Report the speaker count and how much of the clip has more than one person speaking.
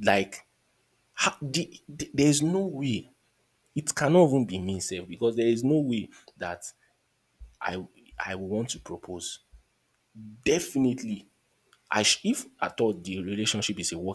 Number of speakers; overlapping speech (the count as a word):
one, no overlap